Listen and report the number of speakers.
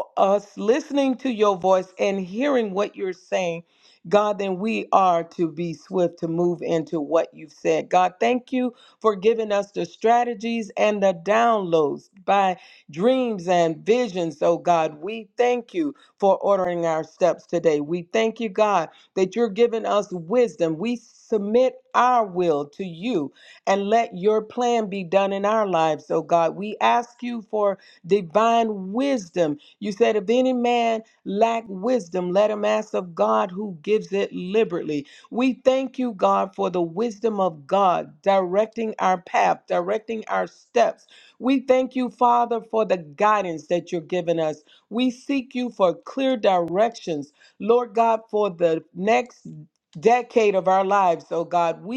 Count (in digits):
1